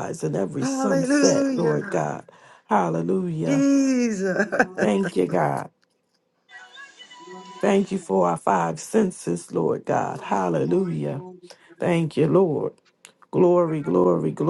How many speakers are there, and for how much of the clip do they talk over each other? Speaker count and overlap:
3, about 35%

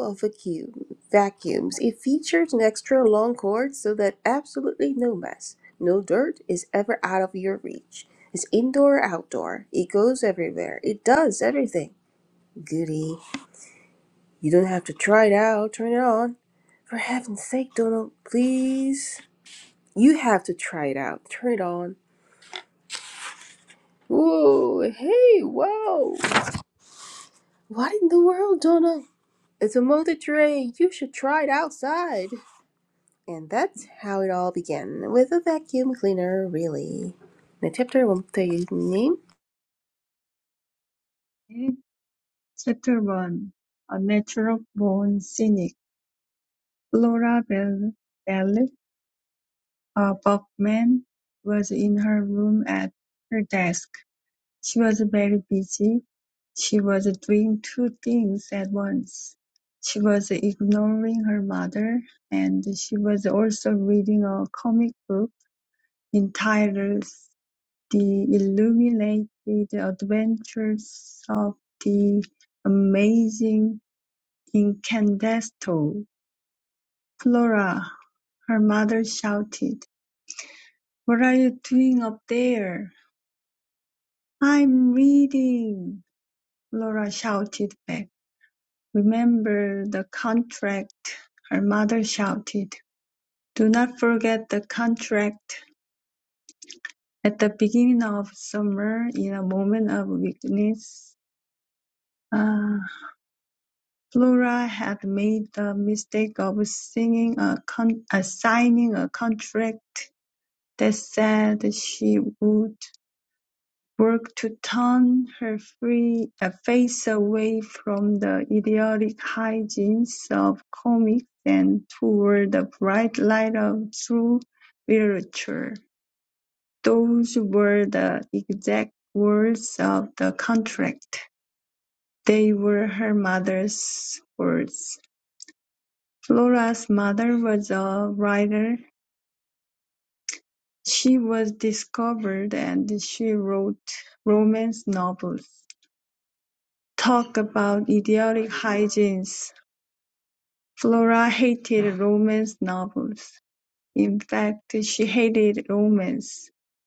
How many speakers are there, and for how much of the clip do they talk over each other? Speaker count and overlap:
2, no overlap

